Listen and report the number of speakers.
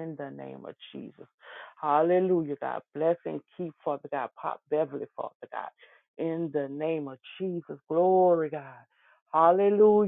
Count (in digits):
1